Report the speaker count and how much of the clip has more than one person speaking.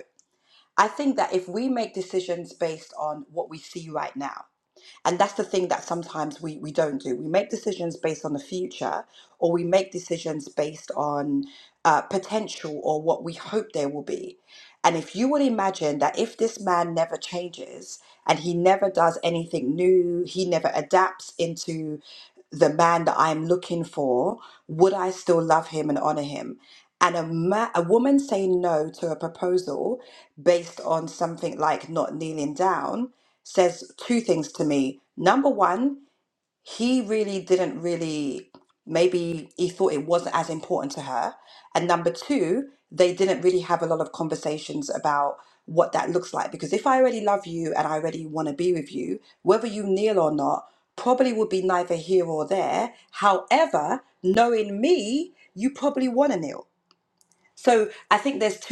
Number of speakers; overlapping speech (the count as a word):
one, no overlap